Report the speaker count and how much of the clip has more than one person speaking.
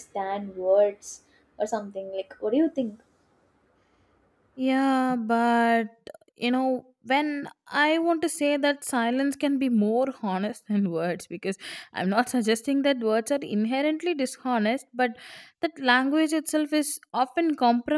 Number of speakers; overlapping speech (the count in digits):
2, no overlap